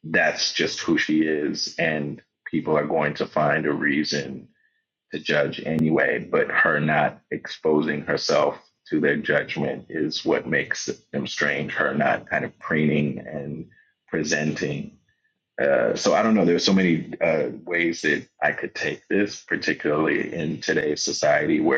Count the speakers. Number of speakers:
1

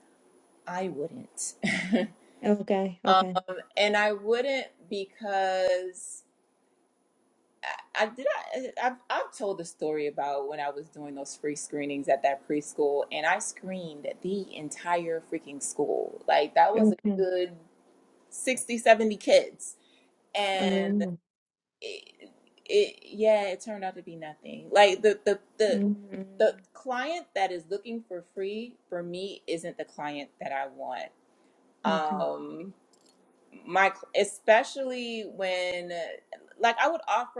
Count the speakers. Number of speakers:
2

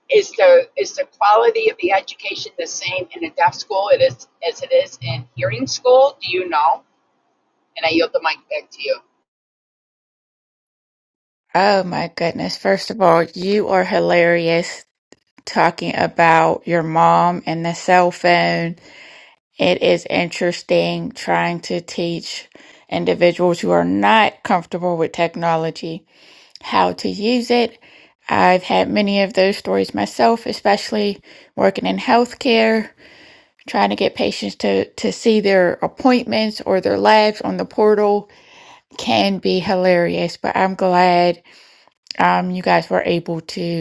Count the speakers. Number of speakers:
2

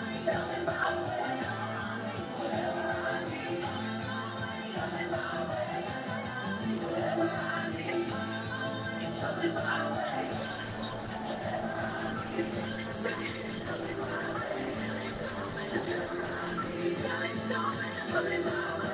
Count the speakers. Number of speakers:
0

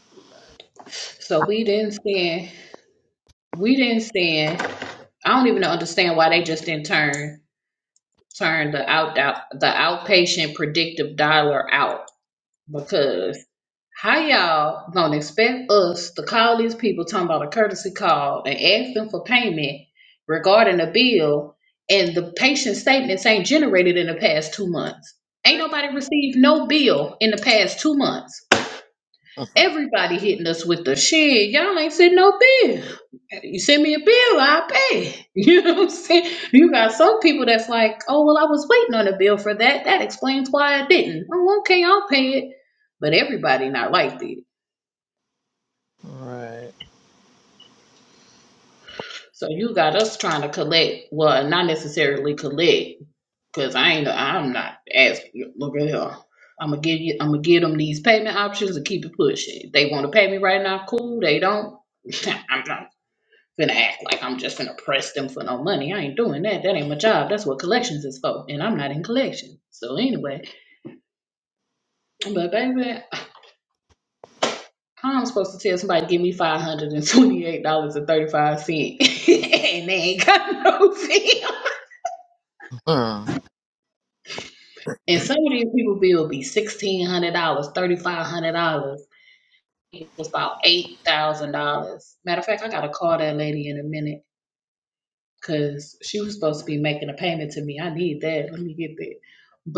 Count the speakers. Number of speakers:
2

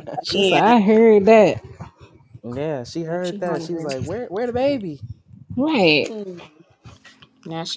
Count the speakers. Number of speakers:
3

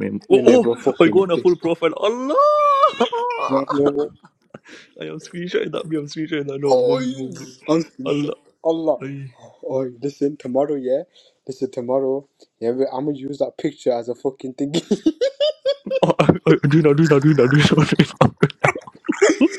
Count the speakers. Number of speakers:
2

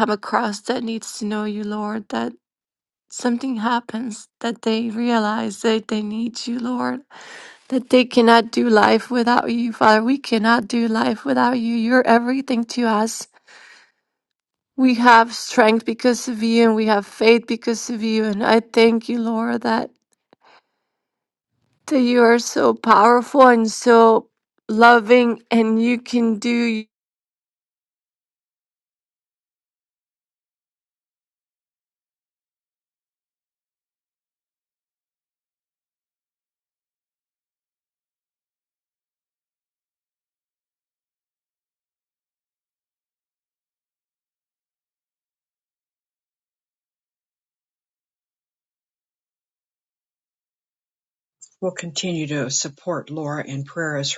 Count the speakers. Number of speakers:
2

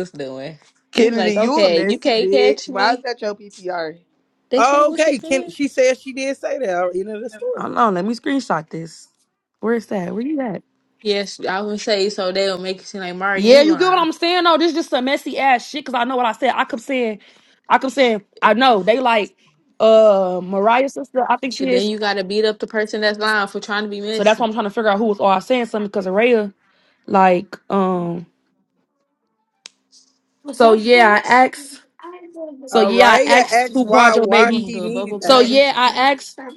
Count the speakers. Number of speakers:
4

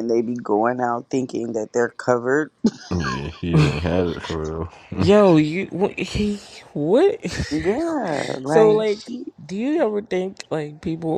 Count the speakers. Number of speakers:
3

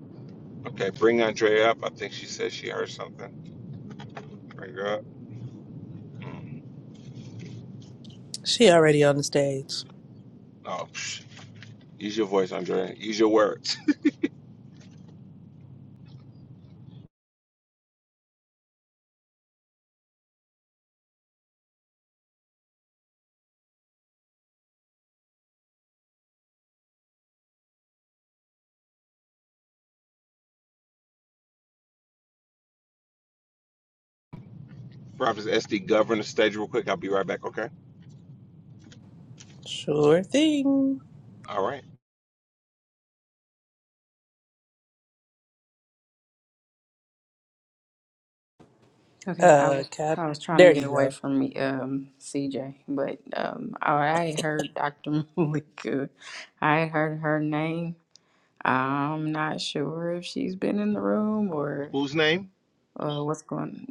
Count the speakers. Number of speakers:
3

